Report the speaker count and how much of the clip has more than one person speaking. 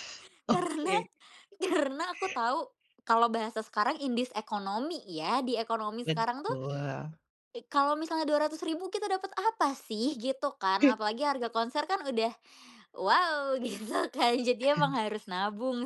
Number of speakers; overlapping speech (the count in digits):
2, about 5%